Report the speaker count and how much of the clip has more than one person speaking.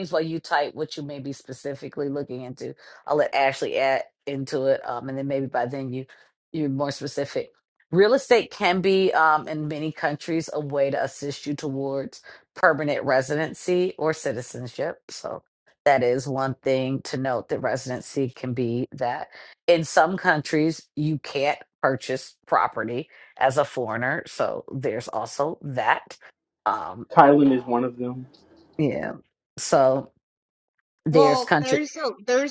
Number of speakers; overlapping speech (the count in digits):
3, about 2%